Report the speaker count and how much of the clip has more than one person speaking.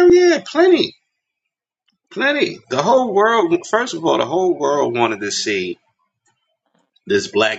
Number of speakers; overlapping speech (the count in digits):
1, no overlap